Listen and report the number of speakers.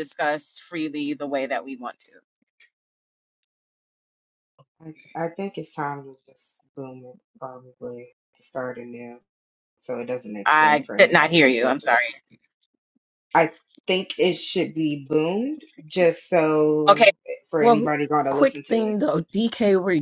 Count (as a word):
three